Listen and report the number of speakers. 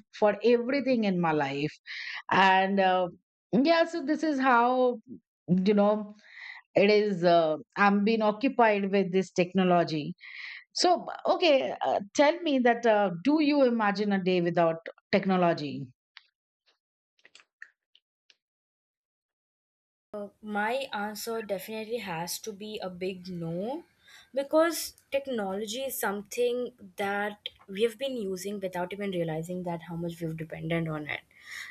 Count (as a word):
two